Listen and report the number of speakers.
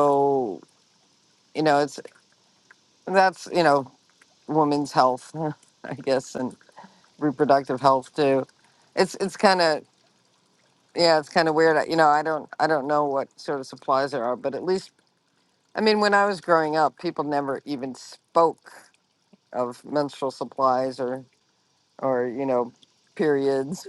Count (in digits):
1